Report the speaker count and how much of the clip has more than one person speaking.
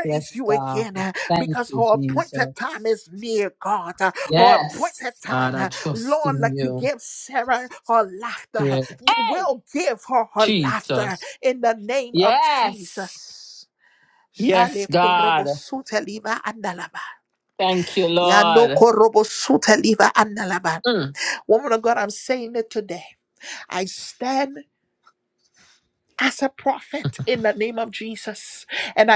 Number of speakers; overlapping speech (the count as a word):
two, about 24%